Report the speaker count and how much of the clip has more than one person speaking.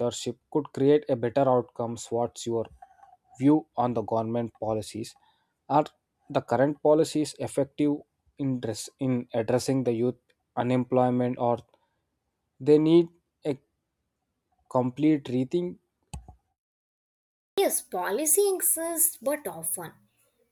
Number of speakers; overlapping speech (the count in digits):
2, no overlap